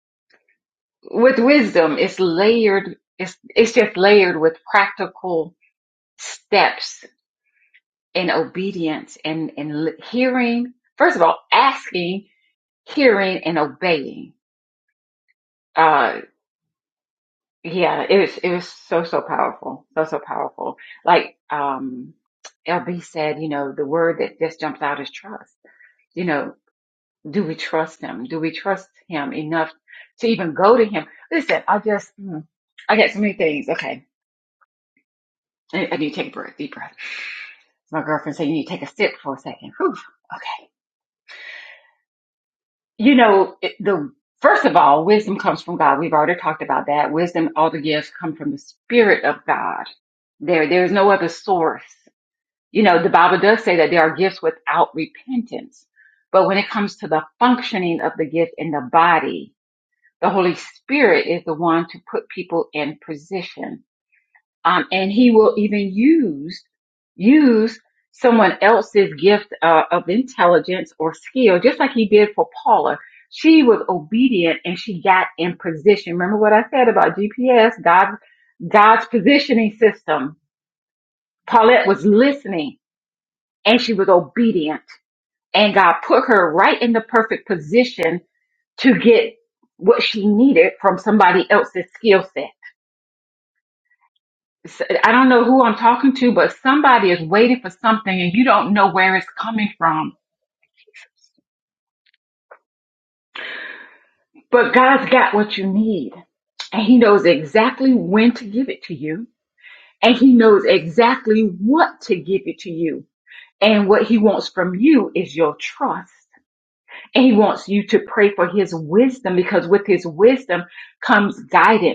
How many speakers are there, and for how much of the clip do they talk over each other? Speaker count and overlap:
one, no overlap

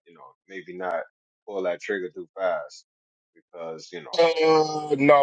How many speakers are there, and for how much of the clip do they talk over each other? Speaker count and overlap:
two, about 1%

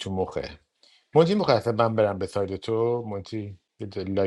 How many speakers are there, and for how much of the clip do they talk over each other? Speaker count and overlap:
one, no overlap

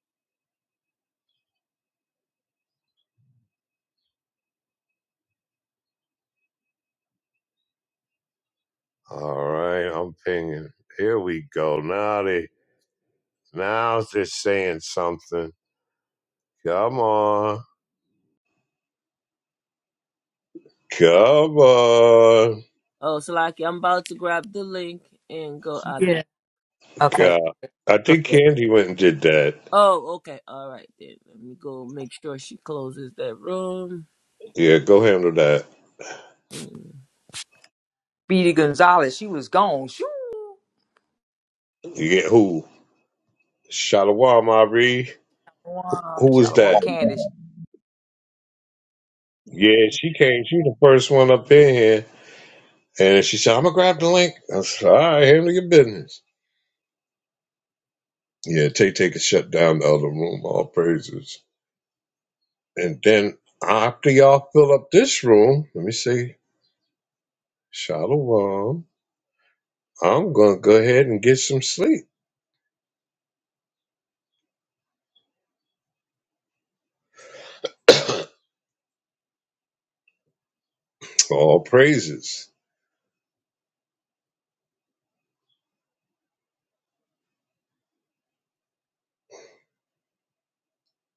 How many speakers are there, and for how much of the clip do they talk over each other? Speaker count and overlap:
three, about 1%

